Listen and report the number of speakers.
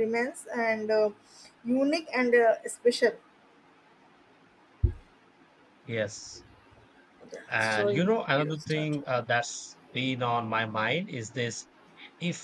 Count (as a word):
two